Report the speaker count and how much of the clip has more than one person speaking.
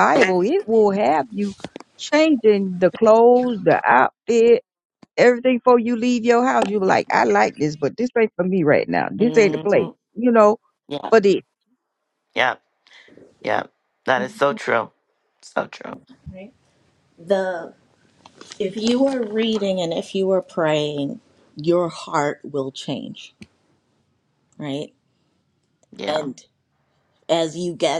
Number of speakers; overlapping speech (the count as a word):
three, about 3%